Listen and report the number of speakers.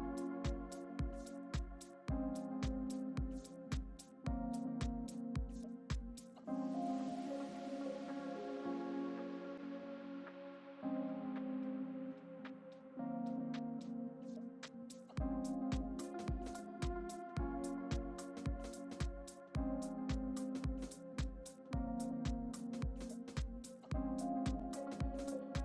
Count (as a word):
zero